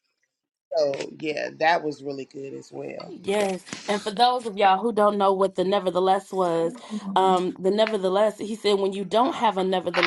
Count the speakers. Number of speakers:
2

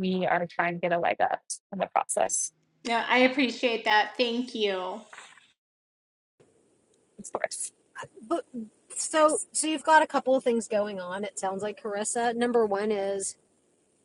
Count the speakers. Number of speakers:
3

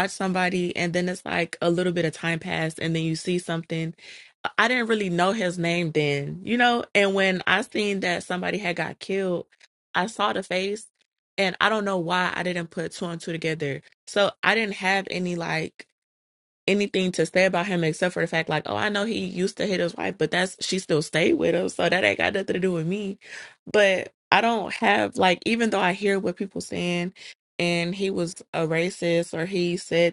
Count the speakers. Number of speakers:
1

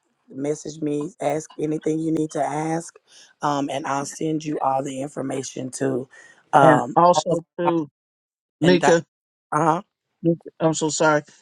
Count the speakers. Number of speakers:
2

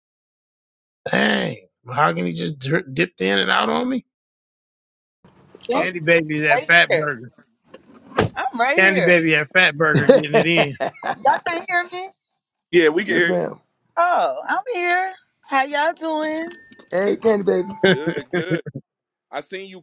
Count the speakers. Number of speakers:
4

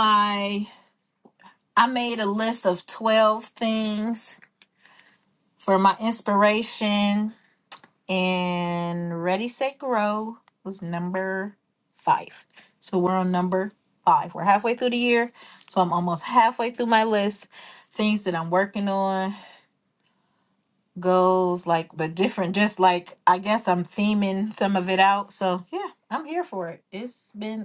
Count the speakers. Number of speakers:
1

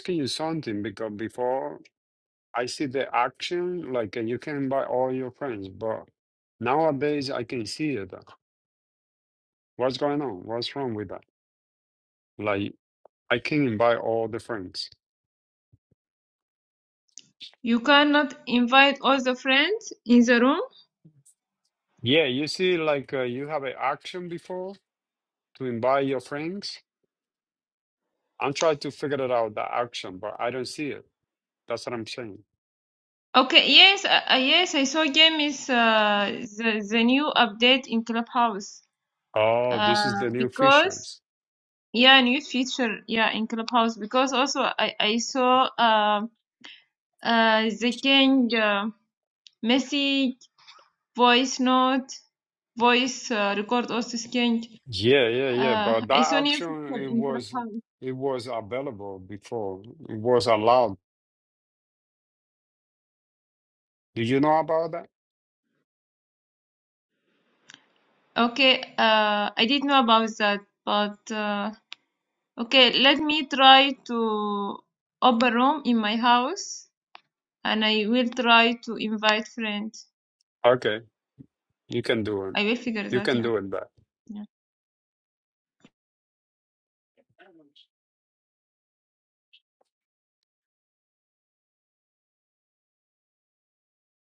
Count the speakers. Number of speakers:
2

